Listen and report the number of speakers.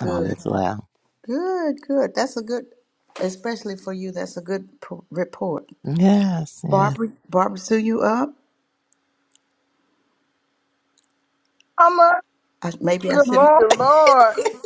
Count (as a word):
three